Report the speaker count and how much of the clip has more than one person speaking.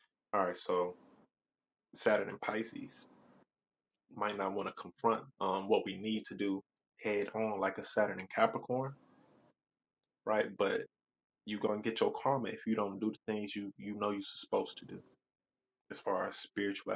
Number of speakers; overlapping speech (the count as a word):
one, no overlap